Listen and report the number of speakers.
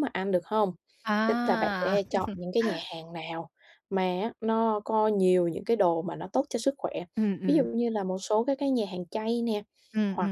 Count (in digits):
2